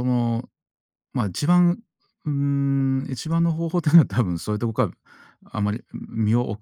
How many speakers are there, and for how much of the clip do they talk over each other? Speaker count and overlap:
one, no overlap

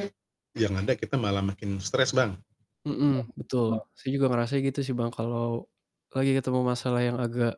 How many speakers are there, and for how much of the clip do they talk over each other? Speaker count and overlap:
two, no overlap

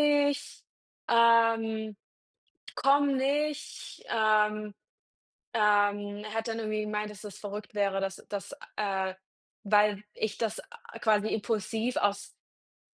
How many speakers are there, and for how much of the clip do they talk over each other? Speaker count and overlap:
one, no overlap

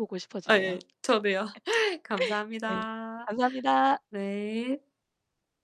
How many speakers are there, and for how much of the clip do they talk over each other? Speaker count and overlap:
two, about 6%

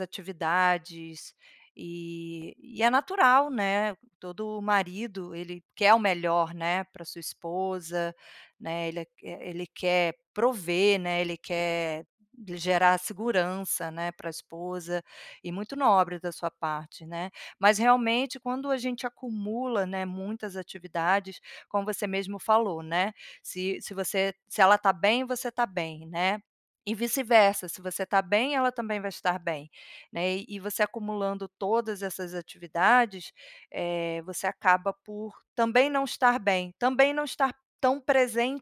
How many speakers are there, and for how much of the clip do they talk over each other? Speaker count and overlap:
one, no overlap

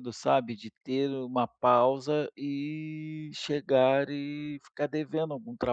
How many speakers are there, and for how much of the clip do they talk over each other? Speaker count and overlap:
one, no overlap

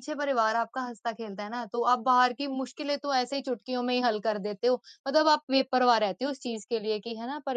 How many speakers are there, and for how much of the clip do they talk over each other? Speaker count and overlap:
one, no overlap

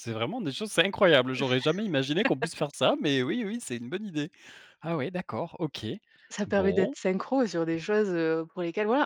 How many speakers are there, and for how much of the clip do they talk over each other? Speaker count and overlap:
two, about 5%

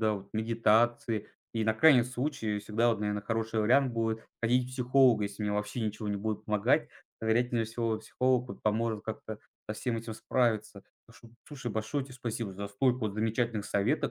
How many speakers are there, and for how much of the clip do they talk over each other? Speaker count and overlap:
one, no overlap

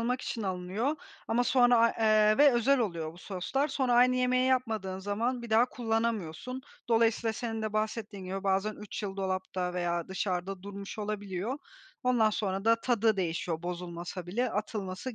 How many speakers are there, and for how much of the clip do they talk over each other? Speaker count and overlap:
one, no overlap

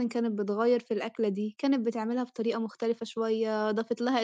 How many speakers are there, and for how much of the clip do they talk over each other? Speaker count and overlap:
one, no overlap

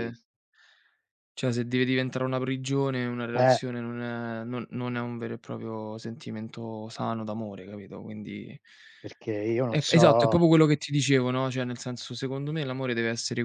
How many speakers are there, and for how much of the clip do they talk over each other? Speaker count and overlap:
two, about 8%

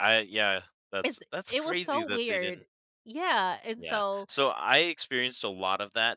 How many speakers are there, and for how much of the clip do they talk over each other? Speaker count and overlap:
two, about 33%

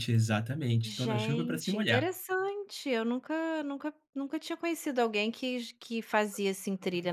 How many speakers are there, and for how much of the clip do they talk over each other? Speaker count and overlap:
two, about 17%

